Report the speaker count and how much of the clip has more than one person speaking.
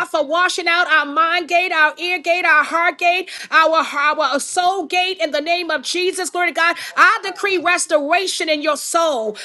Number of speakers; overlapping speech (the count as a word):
one, no overlap